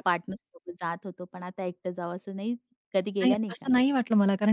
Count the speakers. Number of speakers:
two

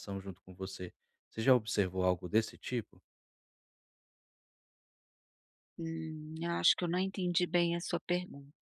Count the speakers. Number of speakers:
two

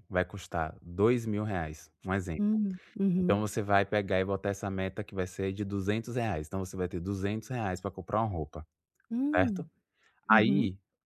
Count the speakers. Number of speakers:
two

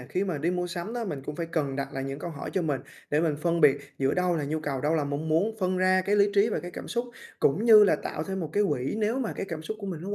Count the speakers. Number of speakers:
one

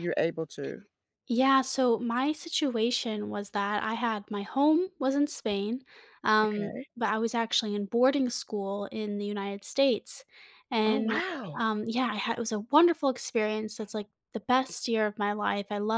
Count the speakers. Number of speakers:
two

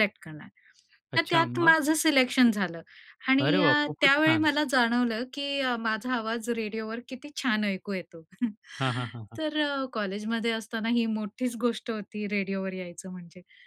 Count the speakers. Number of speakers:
two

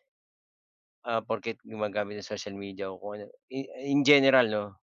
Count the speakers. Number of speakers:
one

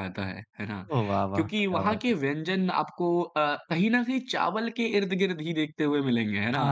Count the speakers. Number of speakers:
two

